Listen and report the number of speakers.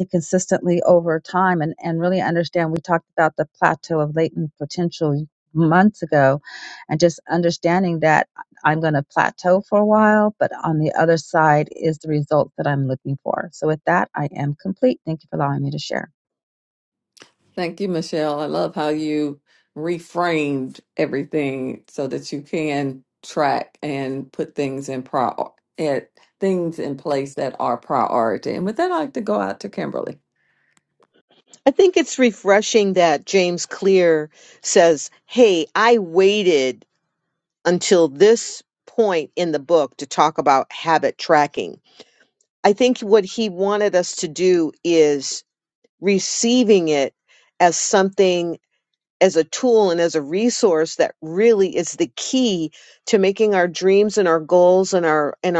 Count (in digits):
3